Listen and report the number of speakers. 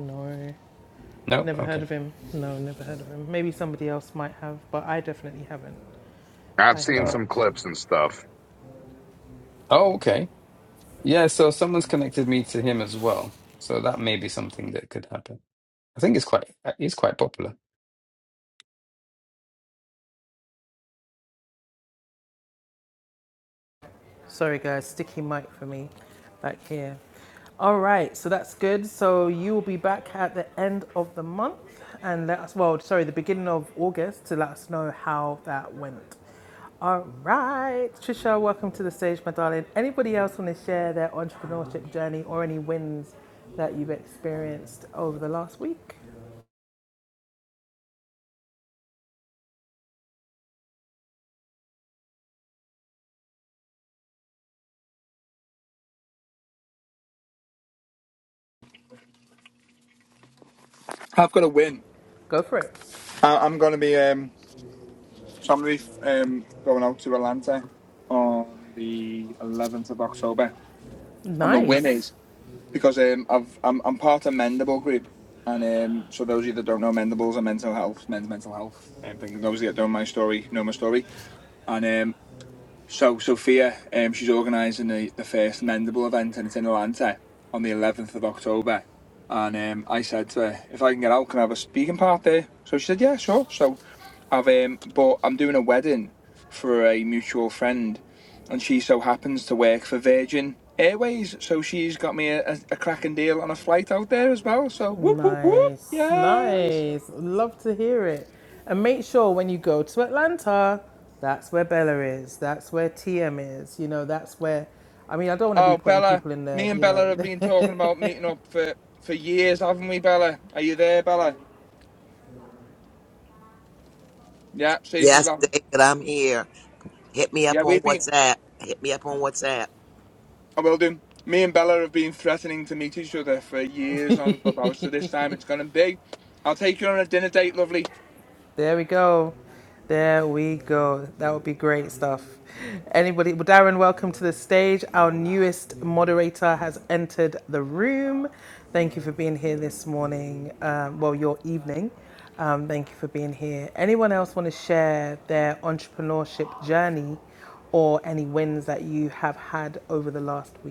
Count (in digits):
5